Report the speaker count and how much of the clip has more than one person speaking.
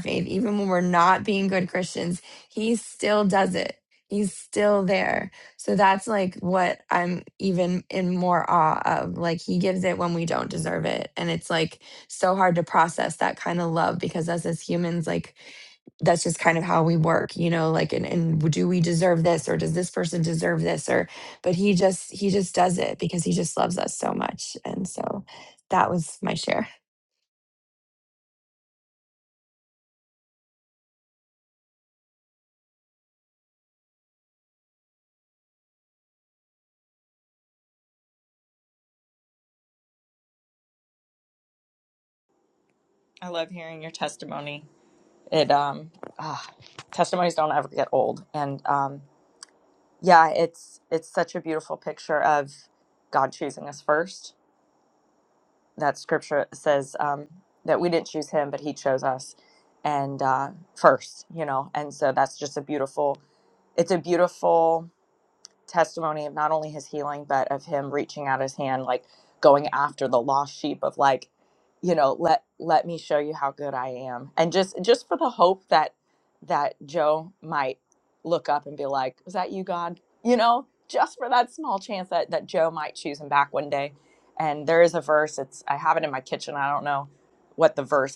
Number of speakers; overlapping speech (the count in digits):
2, no overlap